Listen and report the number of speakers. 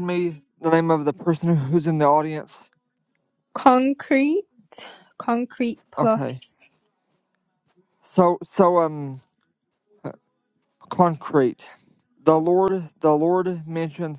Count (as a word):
two